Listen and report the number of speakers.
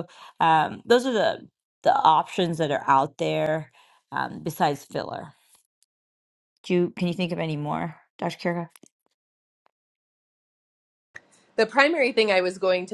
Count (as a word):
two